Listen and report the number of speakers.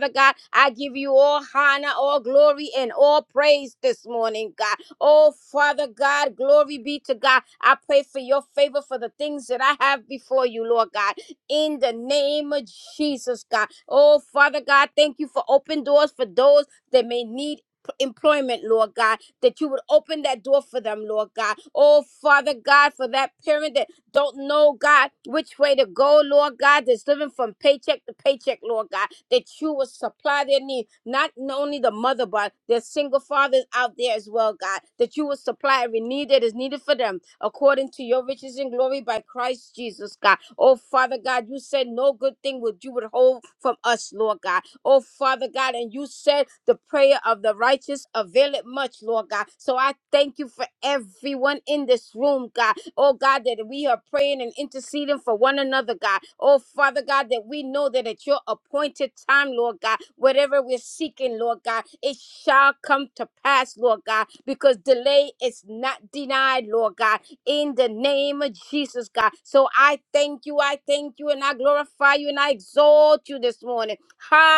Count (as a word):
one